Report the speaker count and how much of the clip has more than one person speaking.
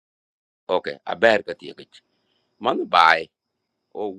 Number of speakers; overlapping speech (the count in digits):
1, no overlap